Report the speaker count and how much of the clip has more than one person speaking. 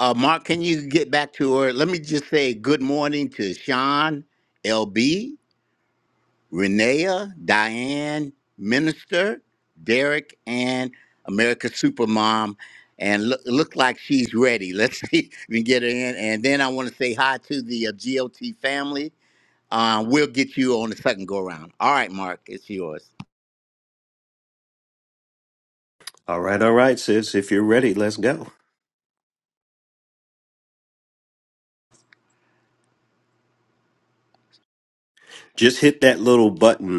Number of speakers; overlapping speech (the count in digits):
2, no overlap